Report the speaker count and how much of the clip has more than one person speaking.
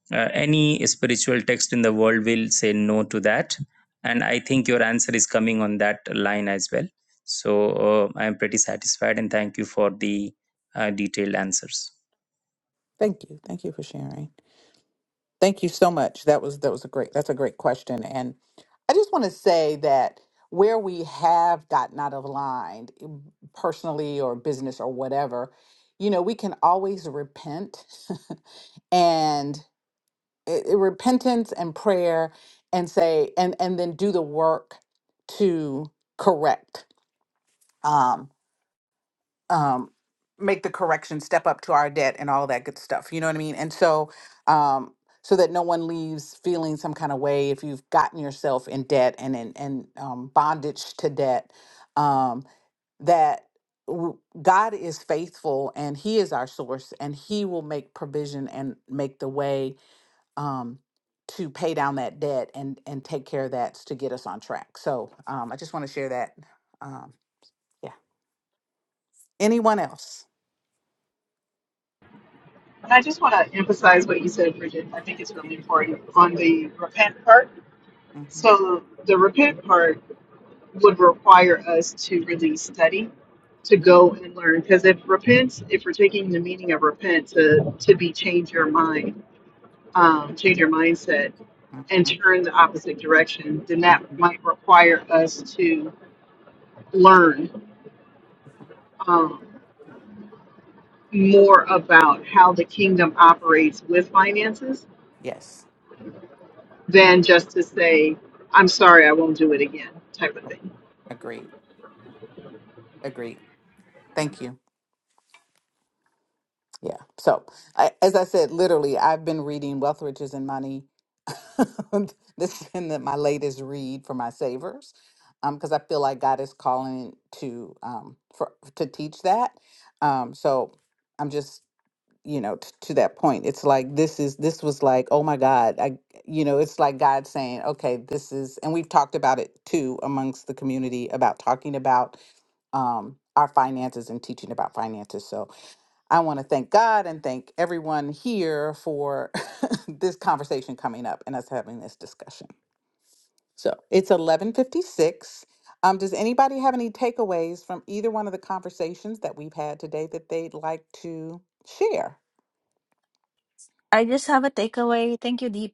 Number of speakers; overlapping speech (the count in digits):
4, under 1%